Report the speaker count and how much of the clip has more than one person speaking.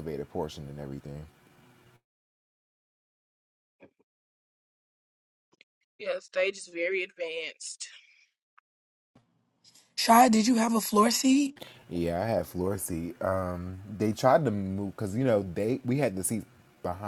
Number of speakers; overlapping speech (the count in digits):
3, no overlap